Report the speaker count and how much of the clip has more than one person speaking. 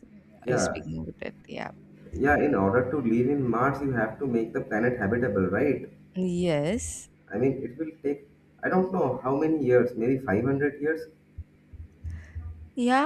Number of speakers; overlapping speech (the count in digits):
2, about 3%